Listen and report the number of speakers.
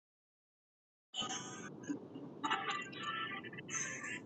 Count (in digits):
0